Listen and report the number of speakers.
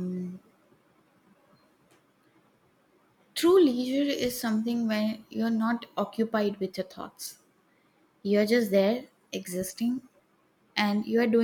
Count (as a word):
one